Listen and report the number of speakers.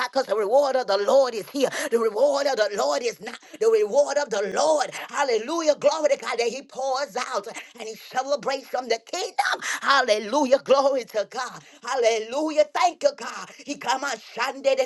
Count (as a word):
one